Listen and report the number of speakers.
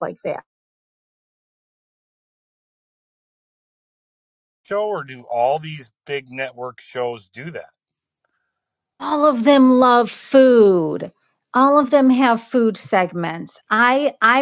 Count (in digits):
2